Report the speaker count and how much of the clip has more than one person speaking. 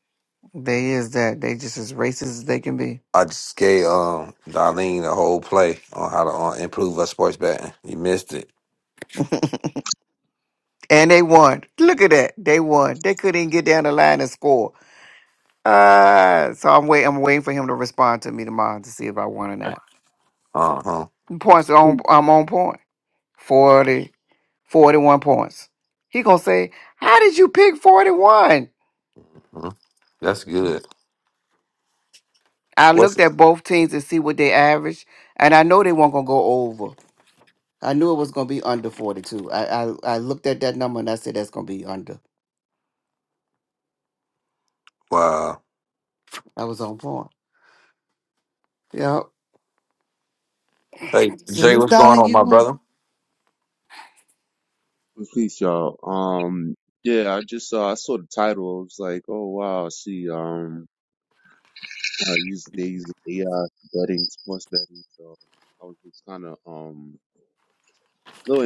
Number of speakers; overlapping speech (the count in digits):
3, about 2%